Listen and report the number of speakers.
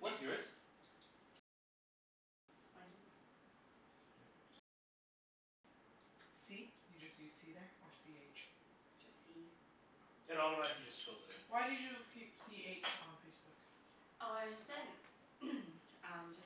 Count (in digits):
3